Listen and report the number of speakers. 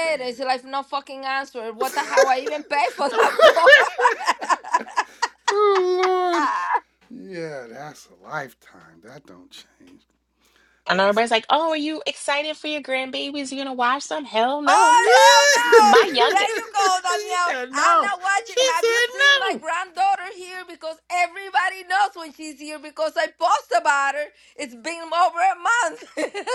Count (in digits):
3